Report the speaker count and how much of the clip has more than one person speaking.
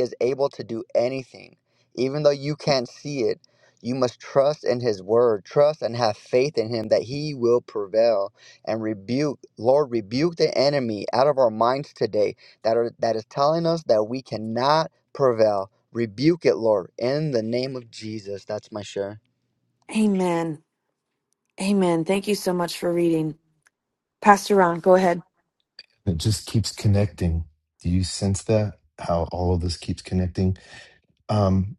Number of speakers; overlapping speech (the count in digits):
3, no overlap